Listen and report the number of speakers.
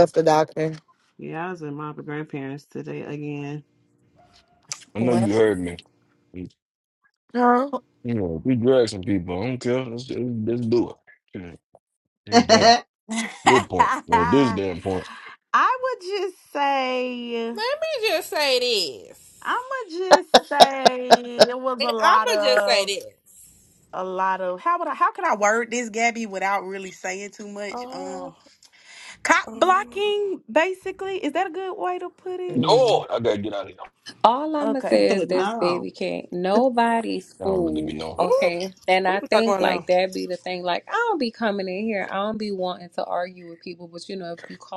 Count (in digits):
6